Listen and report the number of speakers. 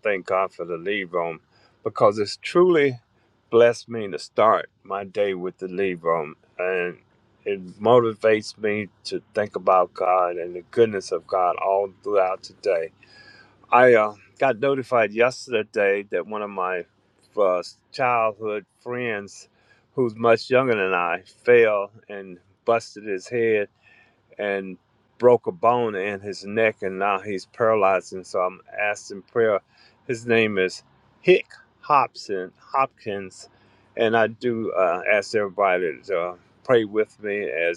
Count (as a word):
one